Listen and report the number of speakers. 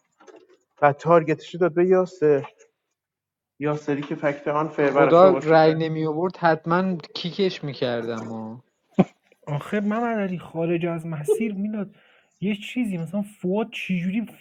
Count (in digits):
3